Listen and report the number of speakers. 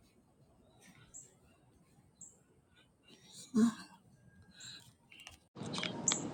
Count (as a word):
zero